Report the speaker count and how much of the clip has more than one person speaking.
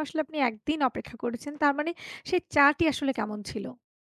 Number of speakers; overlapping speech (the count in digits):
1, no overlap